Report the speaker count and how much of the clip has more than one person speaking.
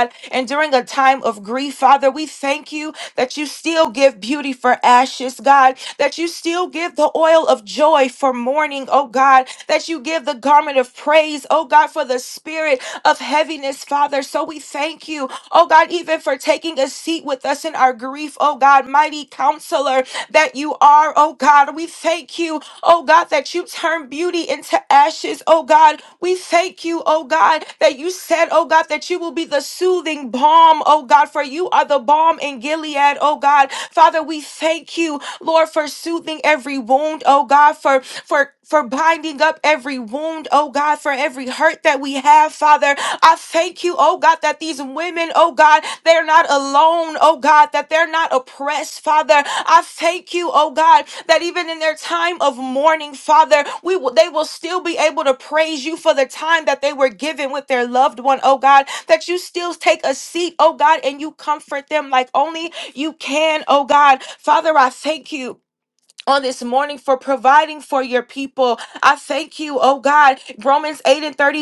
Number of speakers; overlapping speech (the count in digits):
1, no overlap